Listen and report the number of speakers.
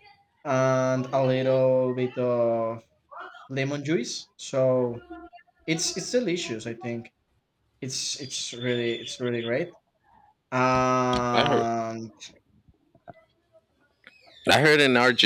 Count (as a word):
two